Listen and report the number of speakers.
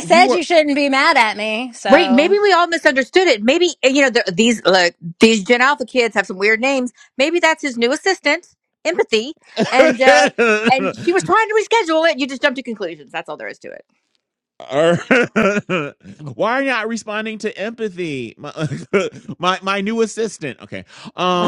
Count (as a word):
three